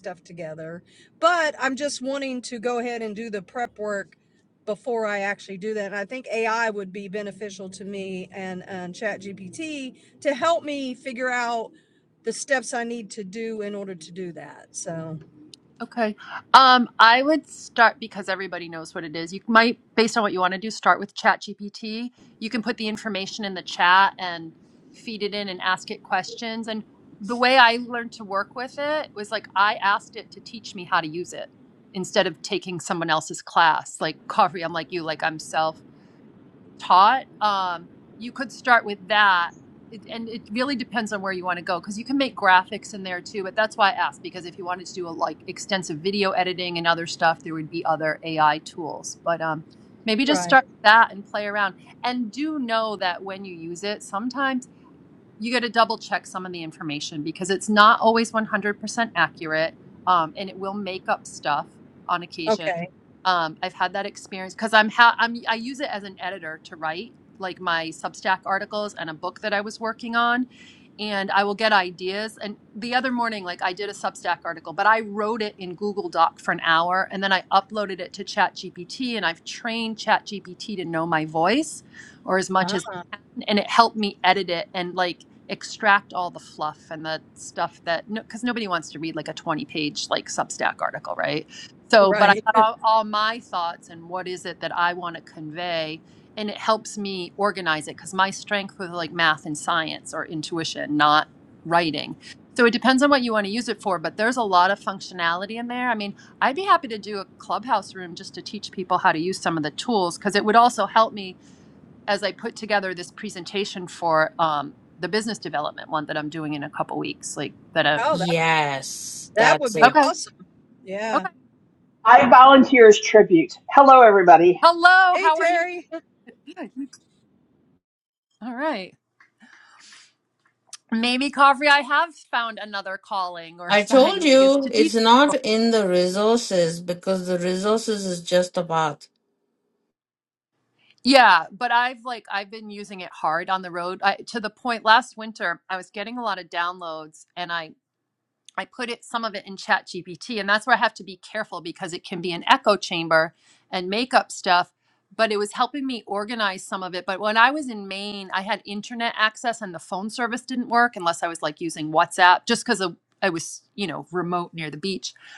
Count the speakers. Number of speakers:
4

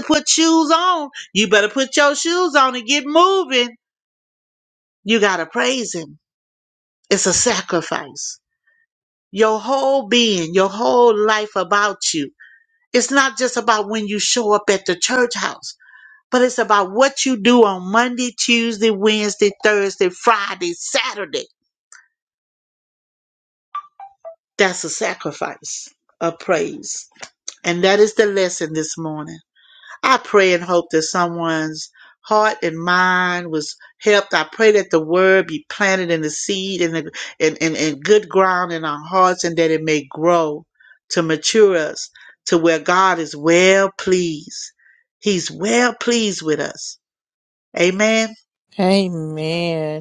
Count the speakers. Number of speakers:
2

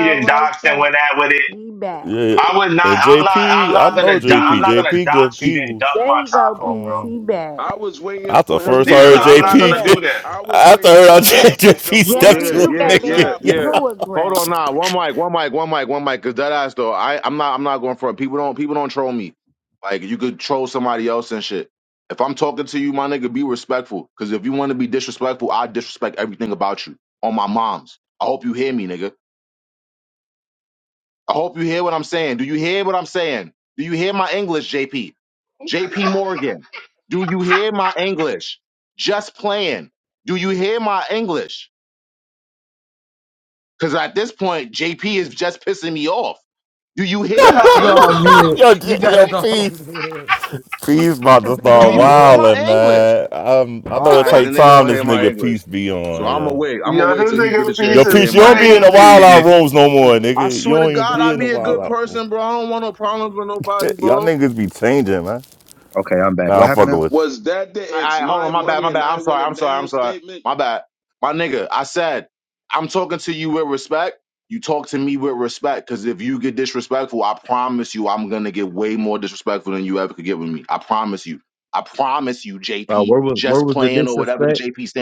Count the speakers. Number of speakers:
7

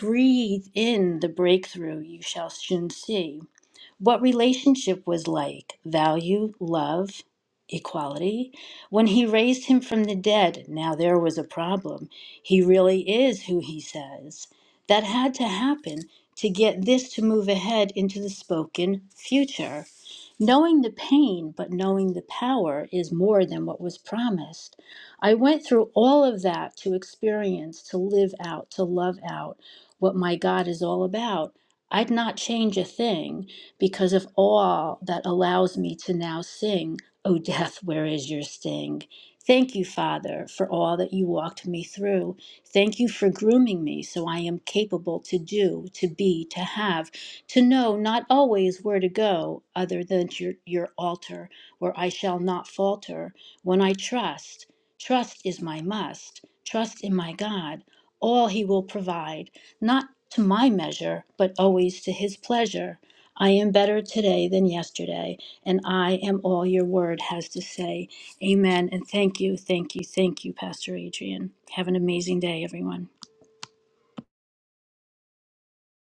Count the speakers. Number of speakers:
1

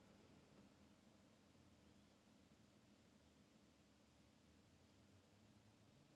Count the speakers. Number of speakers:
0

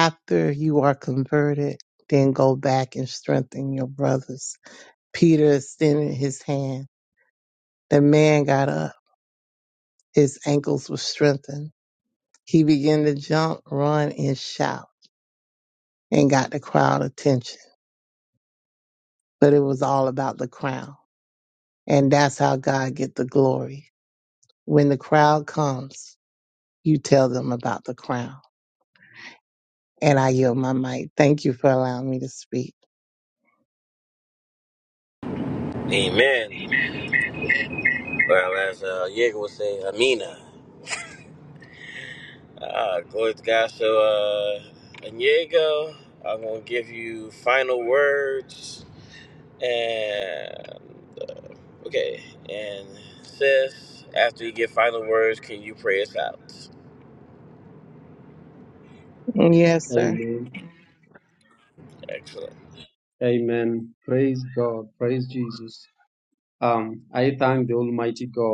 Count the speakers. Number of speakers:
3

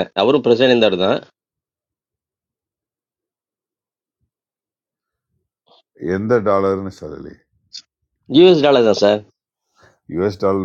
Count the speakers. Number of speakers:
2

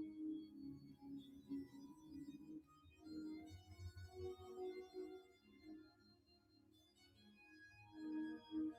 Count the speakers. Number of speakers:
0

